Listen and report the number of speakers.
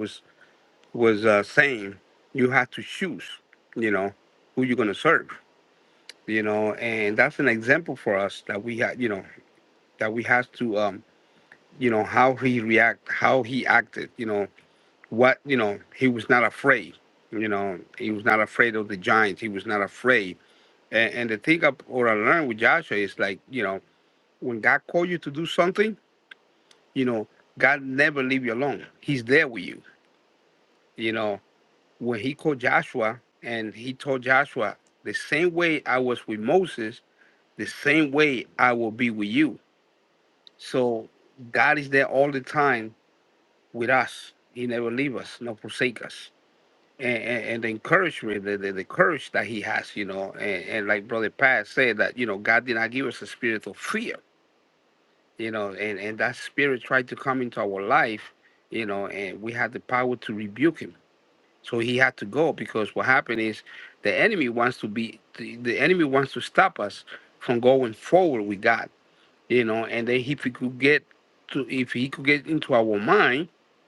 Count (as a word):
one